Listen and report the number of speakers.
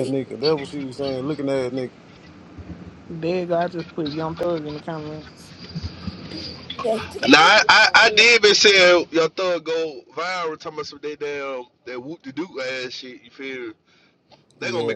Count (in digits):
4